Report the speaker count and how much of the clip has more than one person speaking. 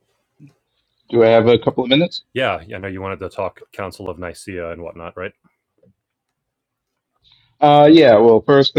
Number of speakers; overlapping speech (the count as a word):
two, no overlap